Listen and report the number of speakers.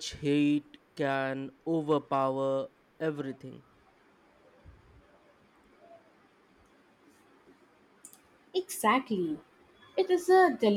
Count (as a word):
two